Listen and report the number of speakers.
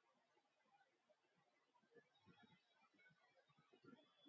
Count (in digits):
0